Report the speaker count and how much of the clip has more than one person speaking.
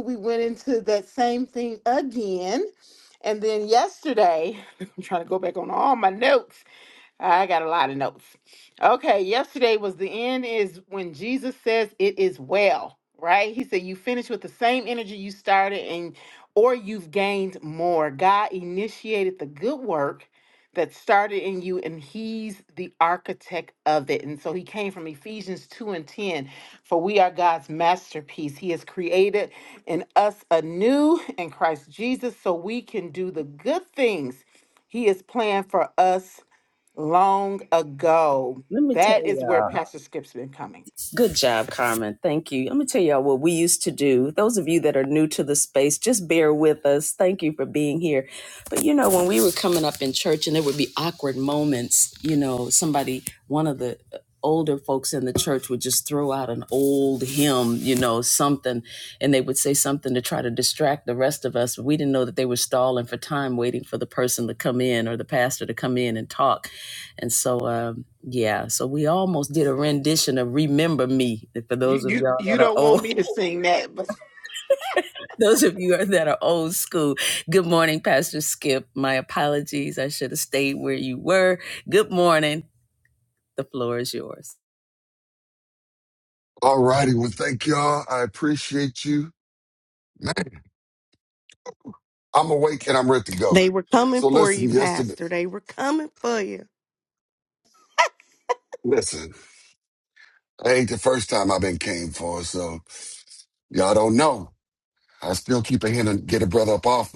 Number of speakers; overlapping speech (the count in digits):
4, about 3%